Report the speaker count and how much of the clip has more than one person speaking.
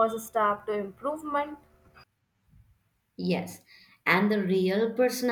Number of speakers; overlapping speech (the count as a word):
two, no overlap